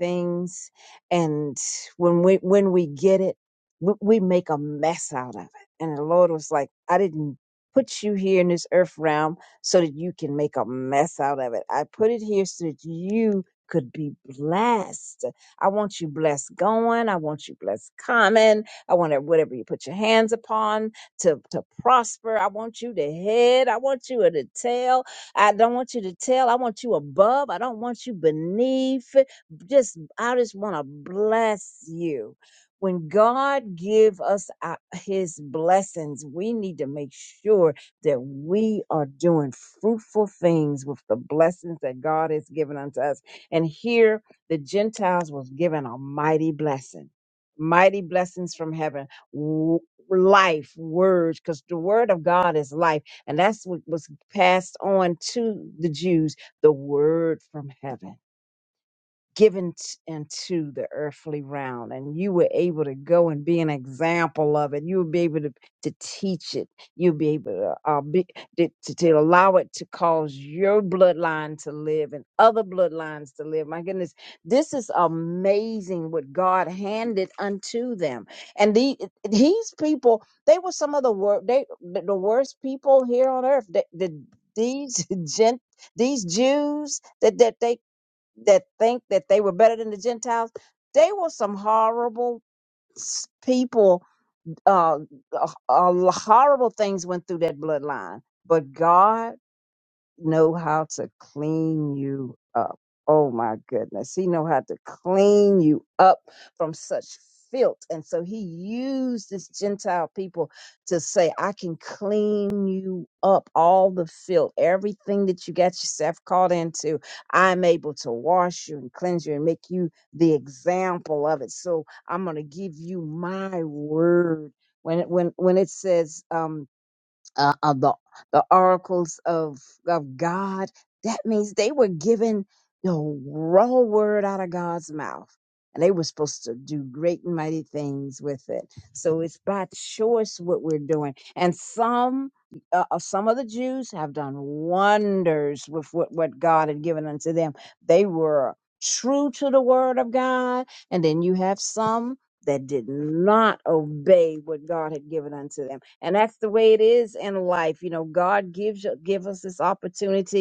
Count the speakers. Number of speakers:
one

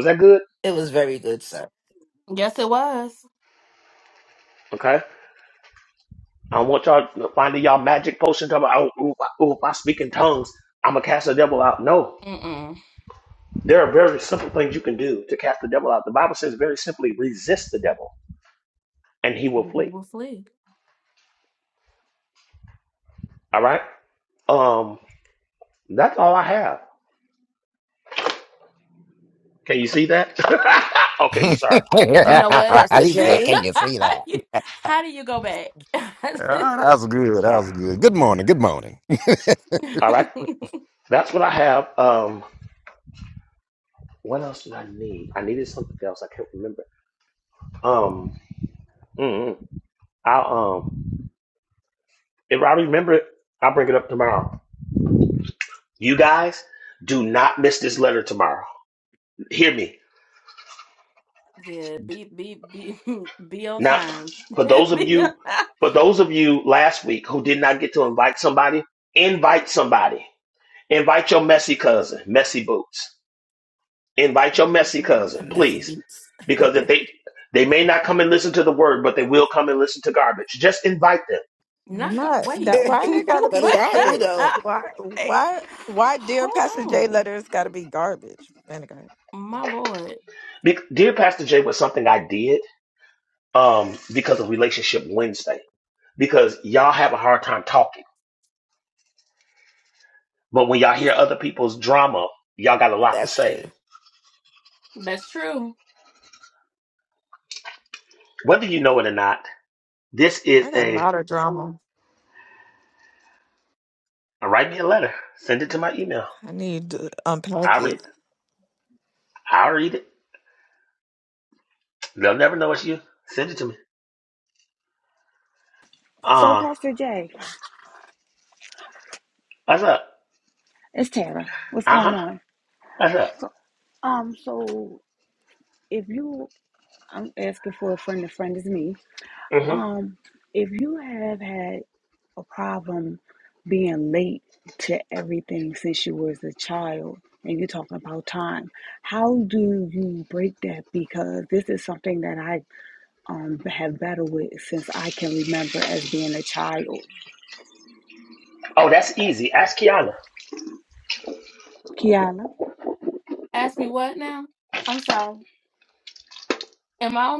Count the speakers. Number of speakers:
six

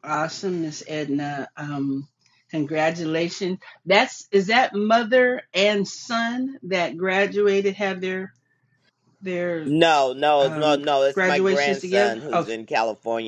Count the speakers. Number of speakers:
two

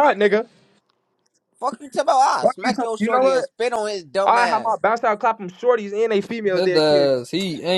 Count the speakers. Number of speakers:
three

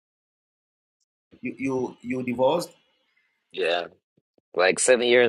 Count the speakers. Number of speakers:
two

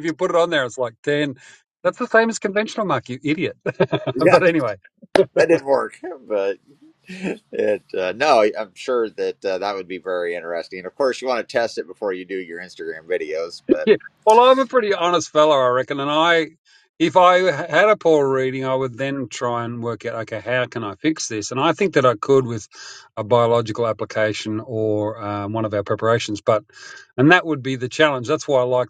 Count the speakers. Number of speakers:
two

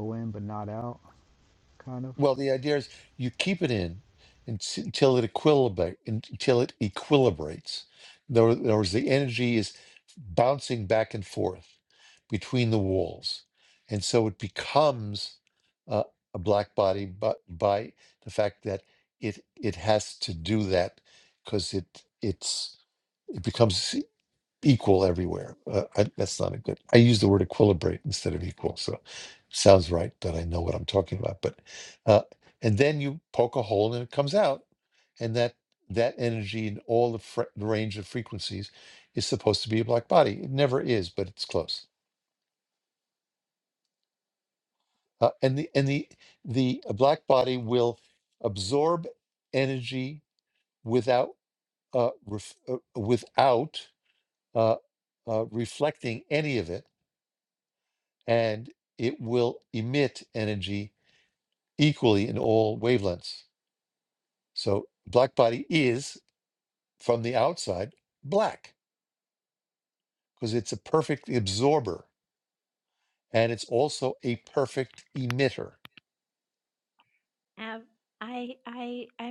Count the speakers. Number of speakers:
three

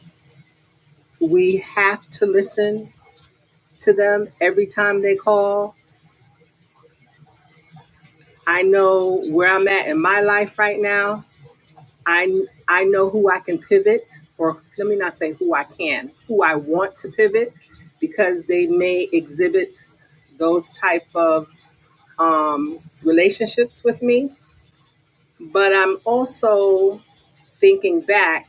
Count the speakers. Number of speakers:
one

